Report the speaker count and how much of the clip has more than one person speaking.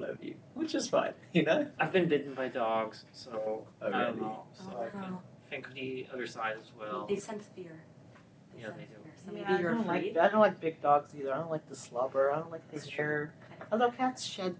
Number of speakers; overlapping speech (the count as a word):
four, about 25%